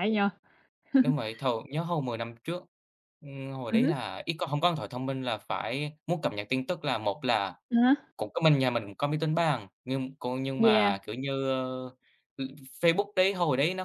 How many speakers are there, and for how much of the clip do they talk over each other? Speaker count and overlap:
2, about 5%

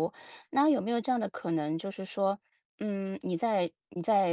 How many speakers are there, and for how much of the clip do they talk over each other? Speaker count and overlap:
1, no overlap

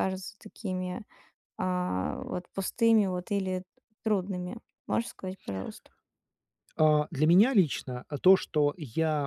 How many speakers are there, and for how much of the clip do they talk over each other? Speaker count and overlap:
2, no overlap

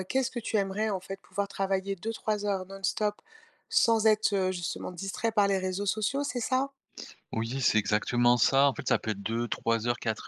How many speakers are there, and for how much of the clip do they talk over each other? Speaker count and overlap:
2, no overlap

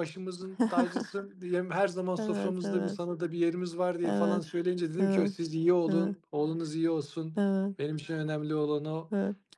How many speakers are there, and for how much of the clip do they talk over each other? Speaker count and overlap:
2, about 19%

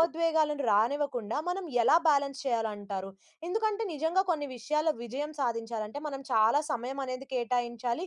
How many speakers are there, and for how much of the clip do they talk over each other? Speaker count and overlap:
1, no overlap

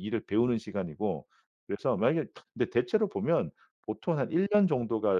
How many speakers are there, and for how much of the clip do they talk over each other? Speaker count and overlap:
1, no overlap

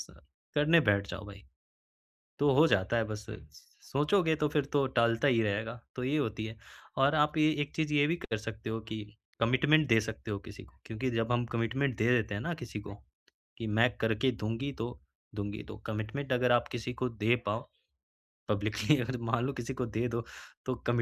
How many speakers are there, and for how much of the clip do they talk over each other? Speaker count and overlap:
1, no overlap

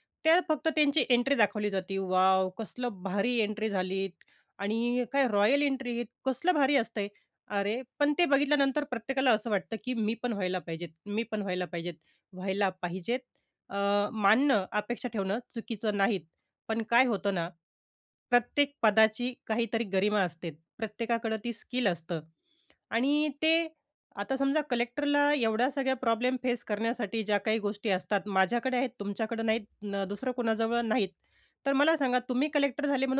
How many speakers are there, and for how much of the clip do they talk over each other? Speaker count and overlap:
1, no overlap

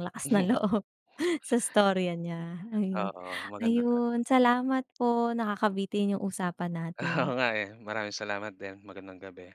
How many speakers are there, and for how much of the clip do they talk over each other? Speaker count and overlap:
2, about 9%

